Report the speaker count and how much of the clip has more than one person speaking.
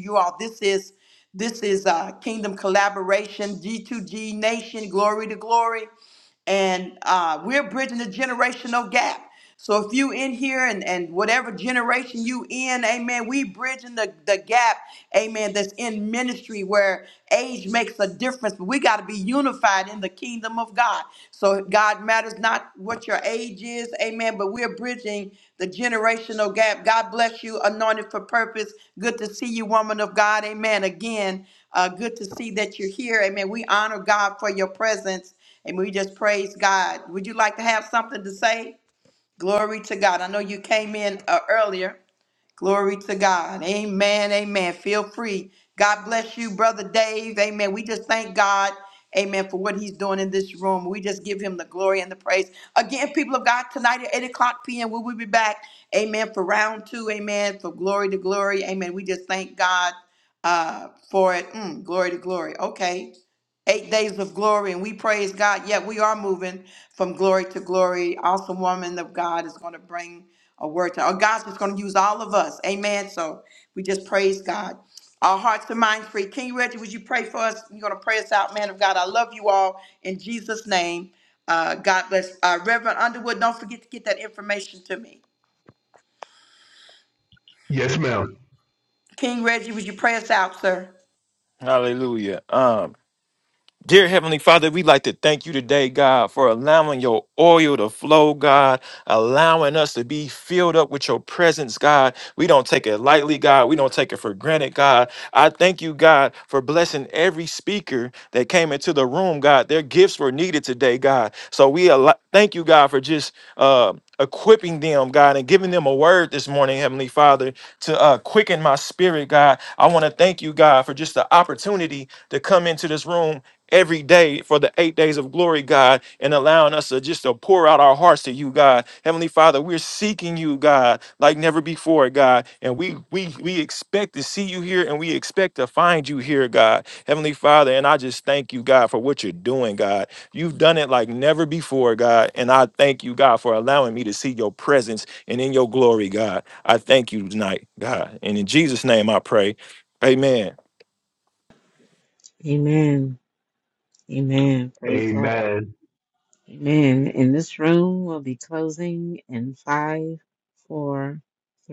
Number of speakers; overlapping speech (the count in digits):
4, under 1%